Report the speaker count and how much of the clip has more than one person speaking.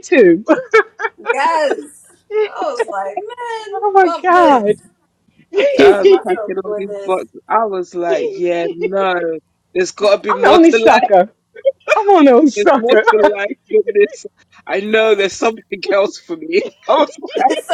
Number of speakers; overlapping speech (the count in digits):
3, about 21%